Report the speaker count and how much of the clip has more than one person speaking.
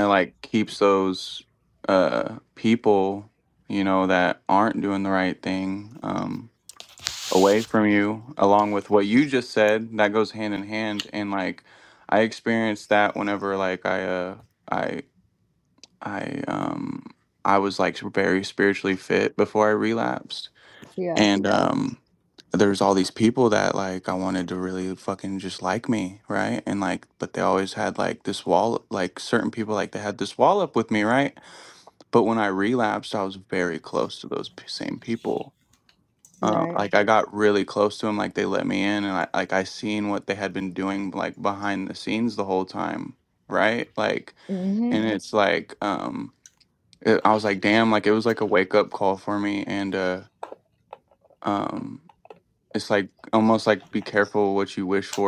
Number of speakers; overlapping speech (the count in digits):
2, about 1%